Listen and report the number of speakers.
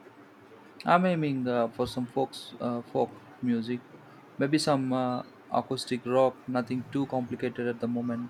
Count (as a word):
one